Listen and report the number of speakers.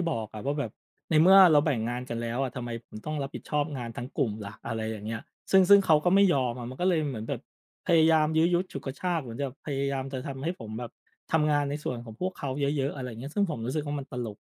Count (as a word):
one